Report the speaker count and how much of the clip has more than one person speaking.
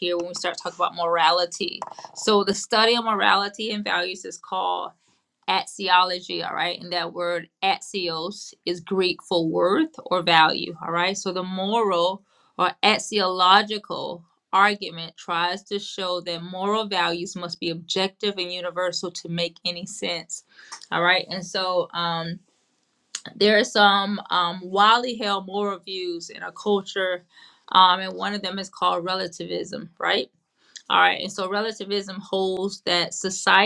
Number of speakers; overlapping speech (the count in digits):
1, no overlap